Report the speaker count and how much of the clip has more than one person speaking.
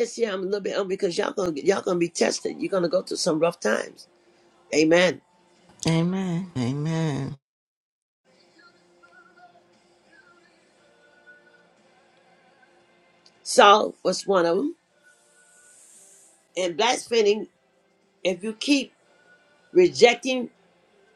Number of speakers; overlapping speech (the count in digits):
2, no overlap